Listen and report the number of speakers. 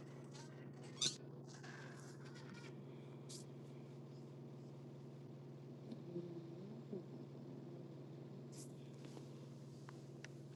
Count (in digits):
0